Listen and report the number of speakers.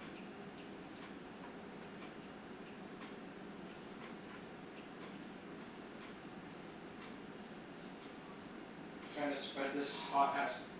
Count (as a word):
one